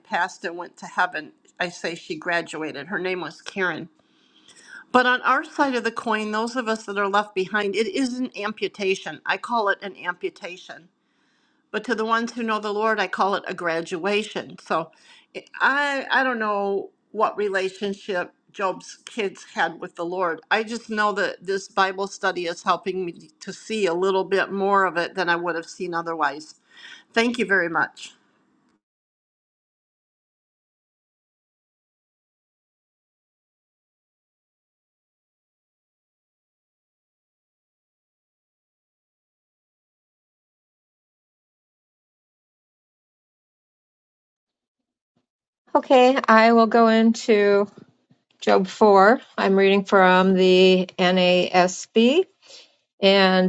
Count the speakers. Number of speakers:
two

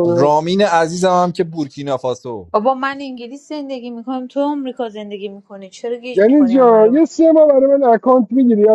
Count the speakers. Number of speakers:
three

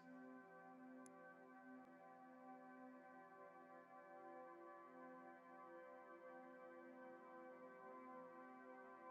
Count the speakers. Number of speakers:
zero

